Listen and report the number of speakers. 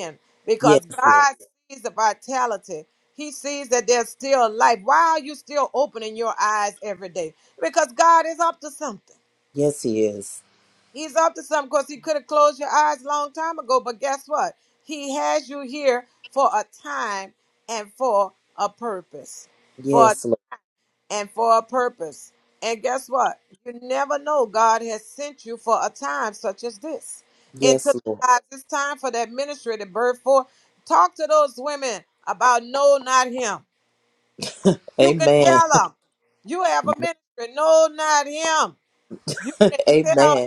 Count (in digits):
2